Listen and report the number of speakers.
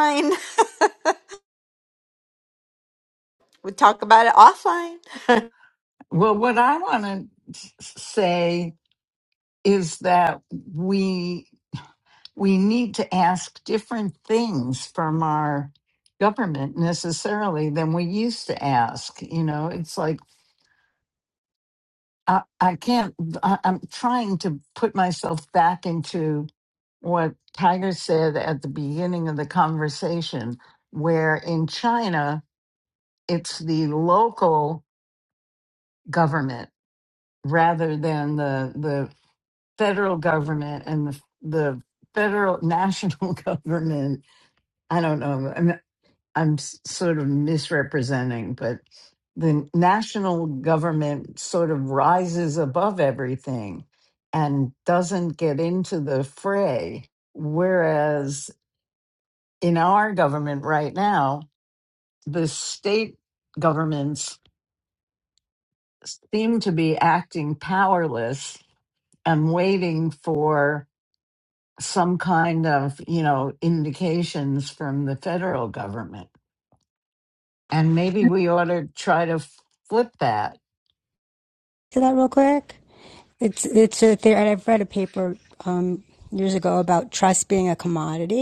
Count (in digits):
3